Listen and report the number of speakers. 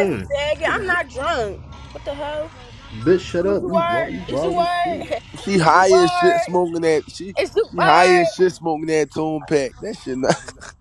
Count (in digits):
3